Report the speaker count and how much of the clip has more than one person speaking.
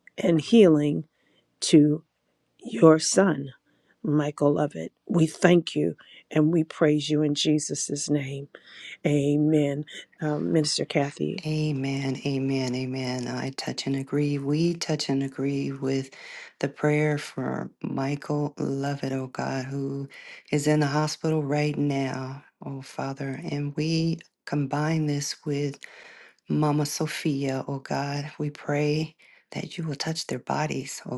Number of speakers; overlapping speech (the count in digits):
2, no overlap